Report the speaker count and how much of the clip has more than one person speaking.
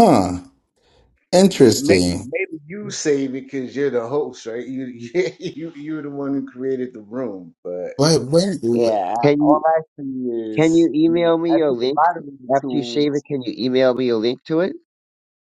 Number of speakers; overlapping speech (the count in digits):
3, about 19%